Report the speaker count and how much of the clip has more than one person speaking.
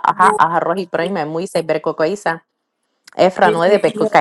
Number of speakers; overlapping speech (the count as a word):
one, no overlap